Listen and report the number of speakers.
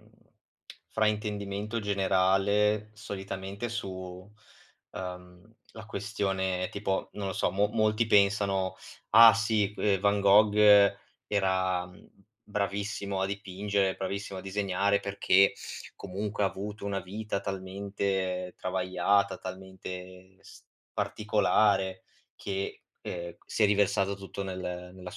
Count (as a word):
one